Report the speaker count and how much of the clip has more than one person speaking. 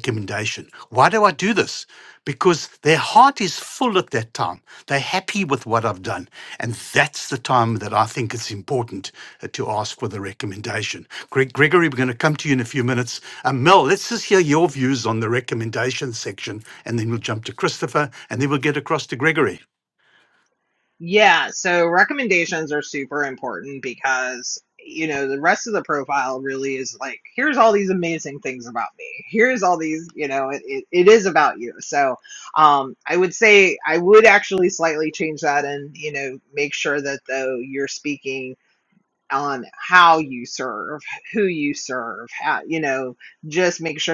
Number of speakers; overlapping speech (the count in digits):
2, no overlap